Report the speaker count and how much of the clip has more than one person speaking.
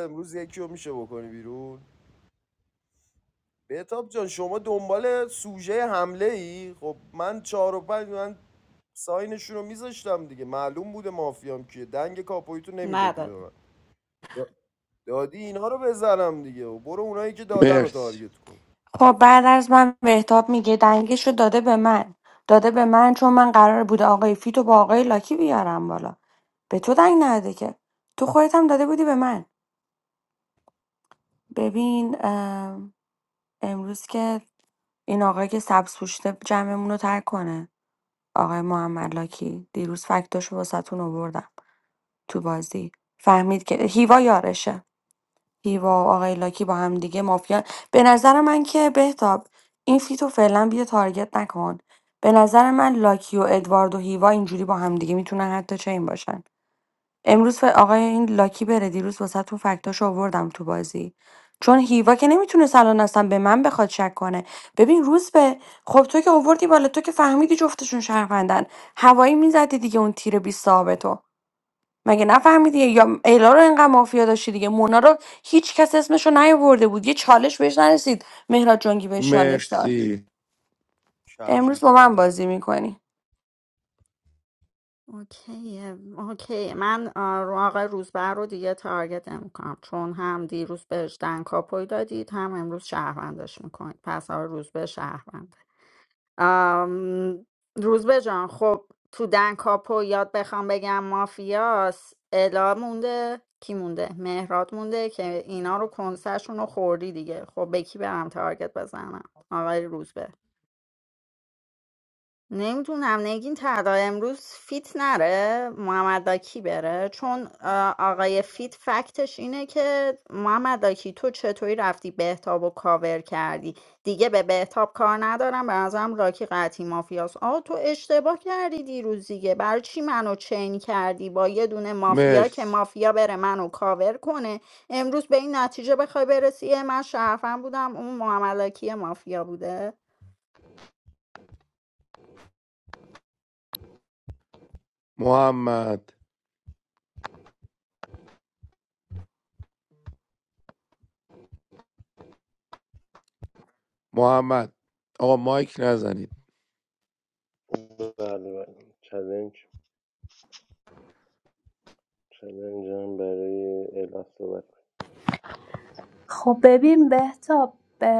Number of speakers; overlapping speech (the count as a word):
six, about 2%